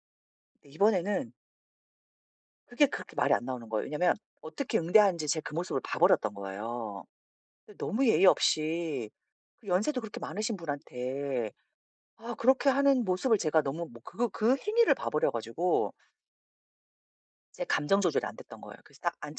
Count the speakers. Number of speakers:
1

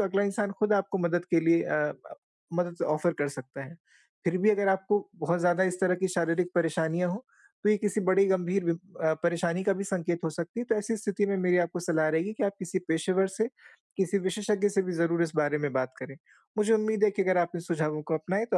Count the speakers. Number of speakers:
1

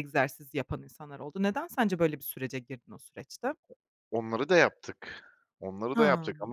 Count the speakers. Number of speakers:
2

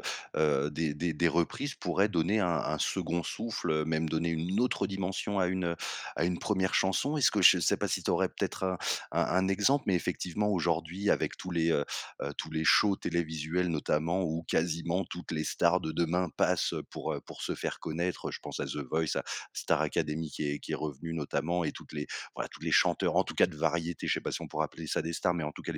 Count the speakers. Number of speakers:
1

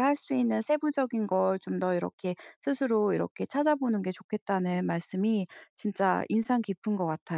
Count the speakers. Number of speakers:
1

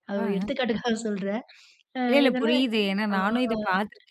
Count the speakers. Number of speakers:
2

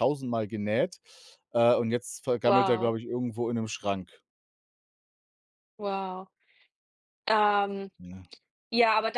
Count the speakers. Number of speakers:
2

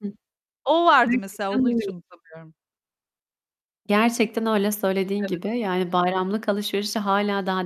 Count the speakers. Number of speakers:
2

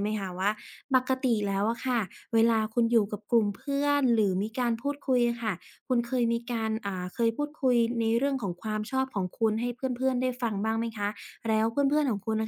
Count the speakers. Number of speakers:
1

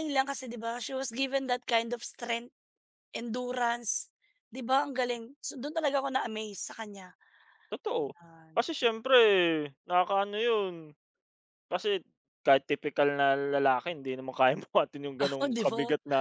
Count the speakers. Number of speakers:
2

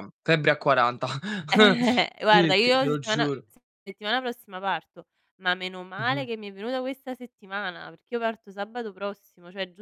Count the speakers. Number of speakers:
2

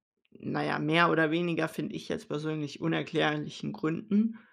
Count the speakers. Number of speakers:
1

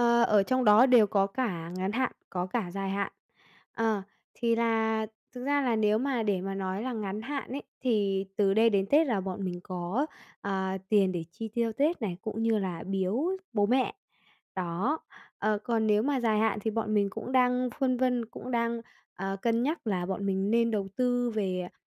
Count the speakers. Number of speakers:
1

